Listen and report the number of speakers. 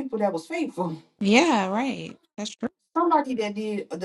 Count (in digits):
2